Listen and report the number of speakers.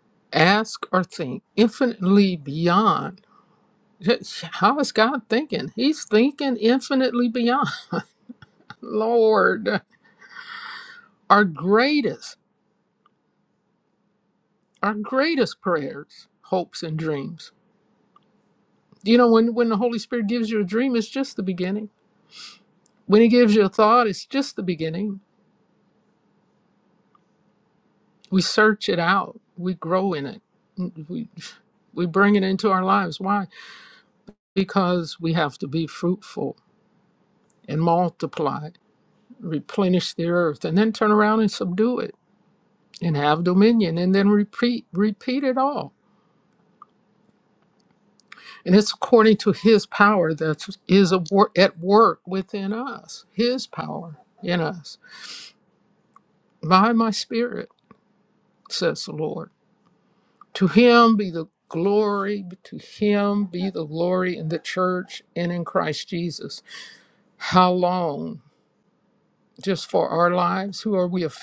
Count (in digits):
1